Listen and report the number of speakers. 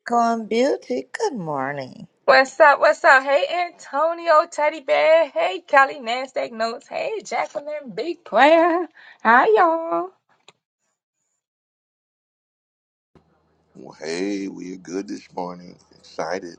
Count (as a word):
three